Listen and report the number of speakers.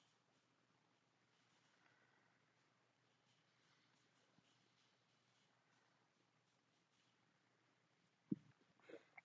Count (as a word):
zero